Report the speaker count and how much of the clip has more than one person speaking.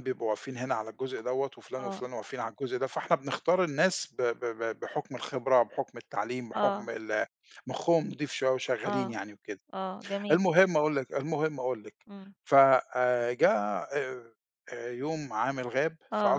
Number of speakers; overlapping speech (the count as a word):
two, about 8%